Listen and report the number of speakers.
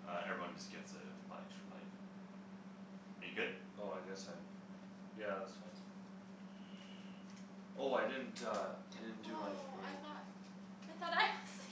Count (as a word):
three